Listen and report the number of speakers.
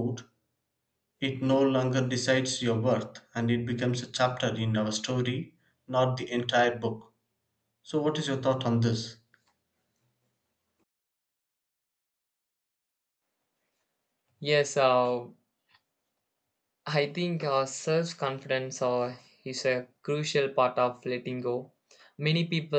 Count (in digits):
2